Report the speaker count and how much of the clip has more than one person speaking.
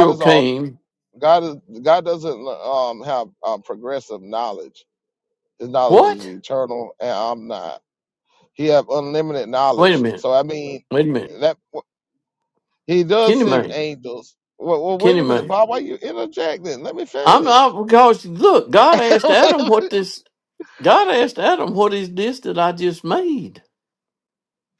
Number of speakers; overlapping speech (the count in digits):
2, about 13%